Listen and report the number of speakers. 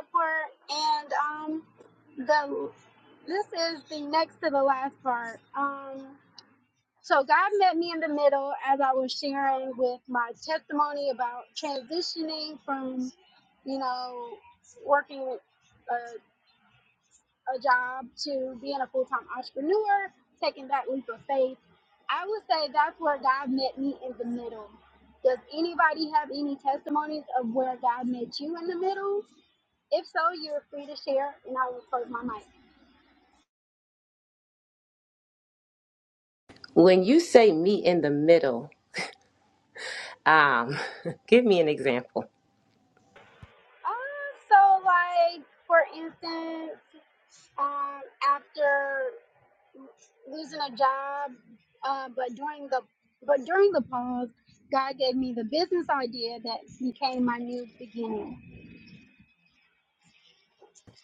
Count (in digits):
2